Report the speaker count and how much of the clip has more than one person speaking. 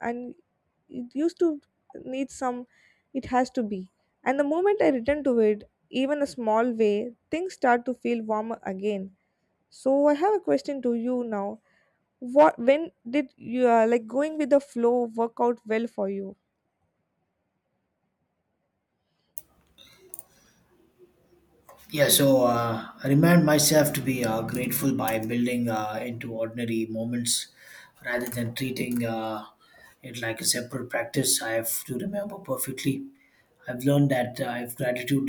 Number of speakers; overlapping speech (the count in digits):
2, no overlap